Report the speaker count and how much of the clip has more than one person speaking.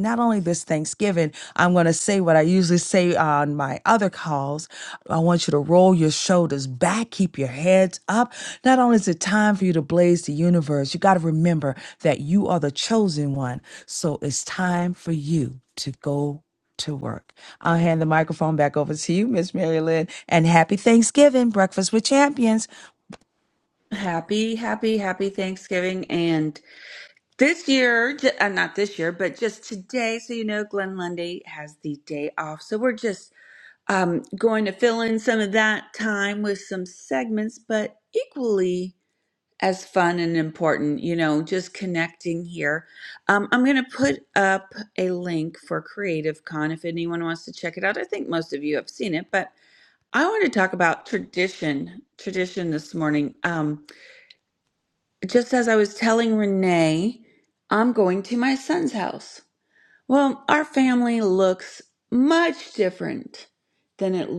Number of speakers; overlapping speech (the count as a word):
two, no overlap